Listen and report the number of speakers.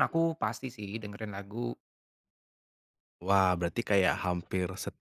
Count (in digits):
2